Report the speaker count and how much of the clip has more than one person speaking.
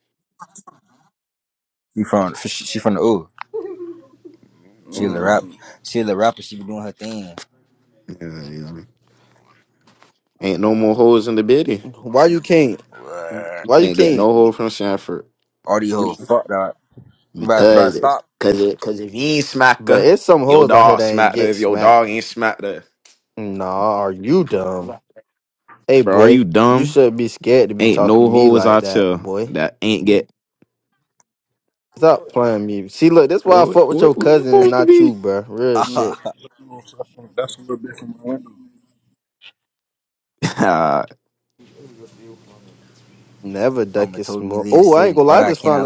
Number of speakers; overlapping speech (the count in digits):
4, about 22%